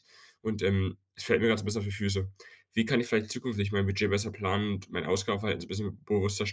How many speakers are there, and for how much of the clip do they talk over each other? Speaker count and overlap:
1, no overlap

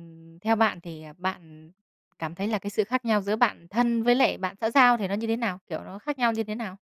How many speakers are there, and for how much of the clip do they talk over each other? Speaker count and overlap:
1, no overlap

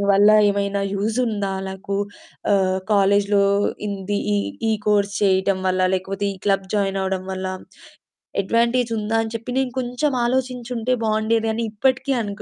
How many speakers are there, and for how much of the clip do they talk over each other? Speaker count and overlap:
1, no overlap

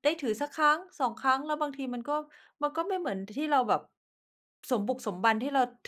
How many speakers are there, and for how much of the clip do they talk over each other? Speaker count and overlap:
1, no overlap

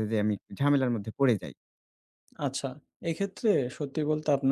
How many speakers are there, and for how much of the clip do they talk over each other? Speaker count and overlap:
2, no overlap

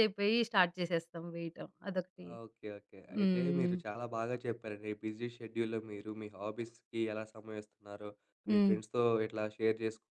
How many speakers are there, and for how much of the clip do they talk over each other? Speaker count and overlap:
2, about 9%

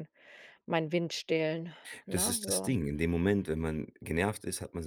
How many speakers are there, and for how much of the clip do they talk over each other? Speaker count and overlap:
2, about 12%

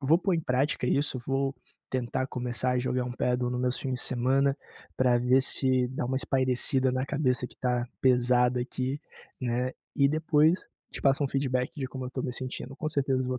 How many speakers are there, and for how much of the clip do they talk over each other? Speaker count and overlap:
1, no overlap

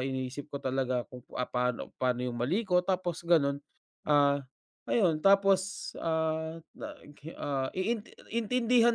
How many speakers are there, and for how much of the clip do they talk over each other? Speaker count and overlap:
1, no overlap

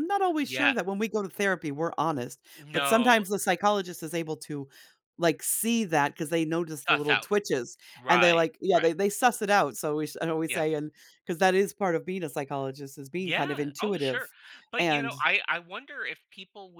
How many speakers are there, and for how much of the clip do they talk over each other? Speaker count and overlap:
2, about 21%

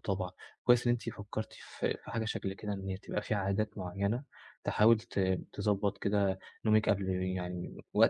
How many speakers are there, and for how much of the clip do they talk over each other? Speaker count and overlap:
1, no overlap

